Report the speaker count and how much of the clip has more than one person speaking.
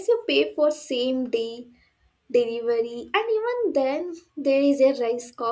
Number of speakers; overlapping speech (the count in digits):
1, no overlap